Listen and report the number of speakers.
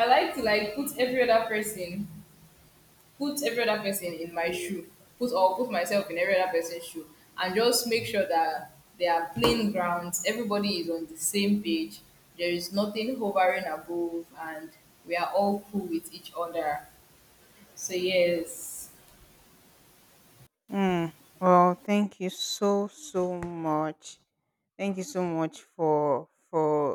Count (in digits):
2